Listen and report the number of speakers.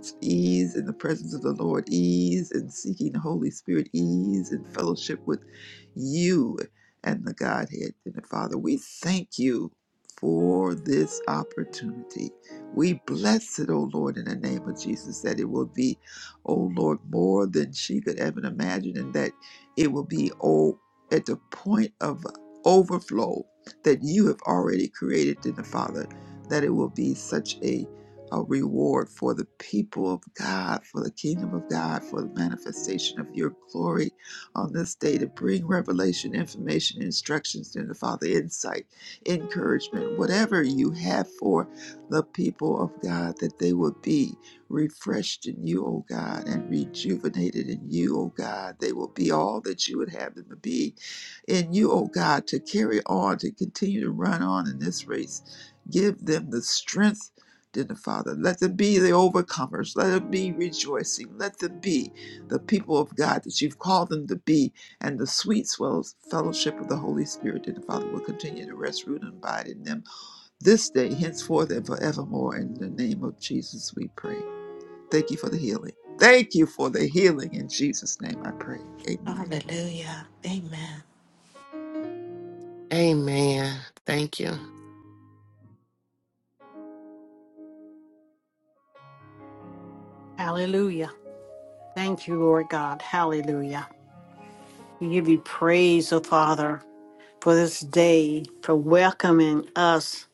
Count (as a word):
four